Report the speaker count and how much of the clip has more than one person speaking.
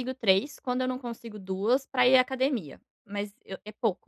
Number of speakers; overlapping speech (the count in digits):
1, no overlap